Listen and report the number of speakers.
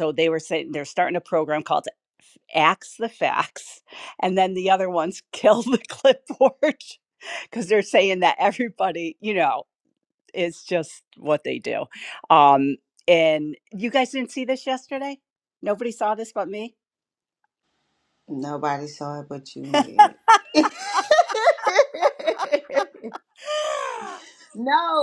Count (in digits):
2